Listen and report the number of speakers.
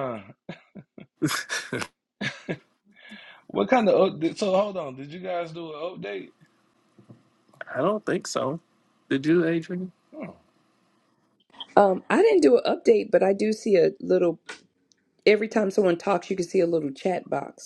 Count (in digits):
3